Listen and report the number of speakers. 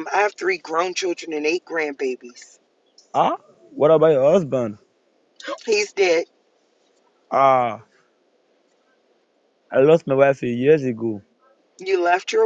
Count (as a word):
two